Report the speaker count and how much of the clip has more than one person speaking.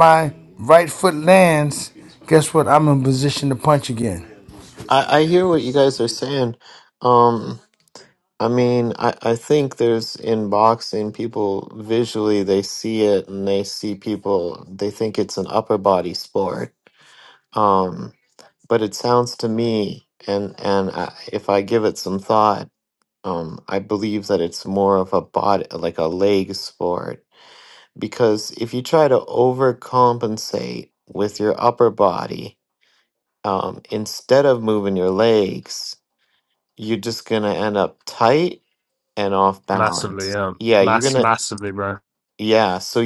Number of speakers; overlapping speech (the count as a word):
three, about 3%